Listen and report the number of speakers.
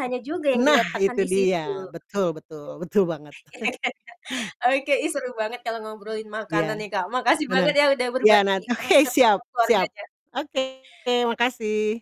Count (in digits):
2